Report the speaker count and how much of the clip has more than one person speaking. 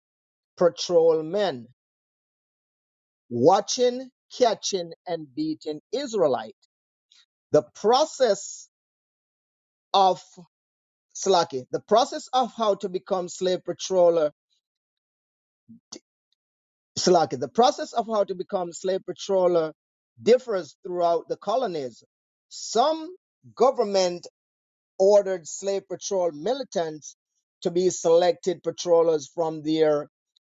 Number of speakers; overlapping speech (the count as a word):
one, no overlap